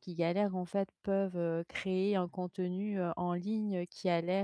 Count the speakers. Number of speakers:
1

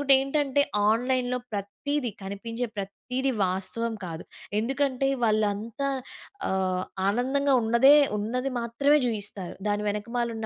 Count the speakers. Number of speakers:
1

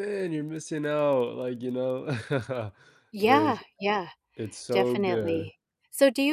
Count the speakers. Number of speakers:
2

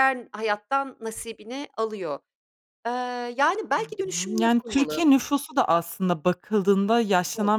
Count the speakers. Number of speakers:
2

